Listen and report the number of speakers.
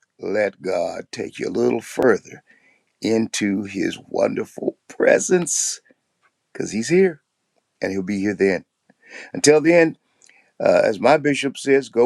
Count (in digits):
1